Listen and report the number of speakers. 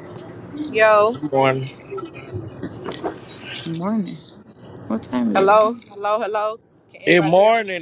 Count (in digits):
3